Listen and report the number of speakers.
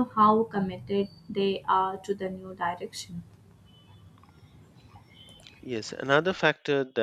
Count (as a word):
two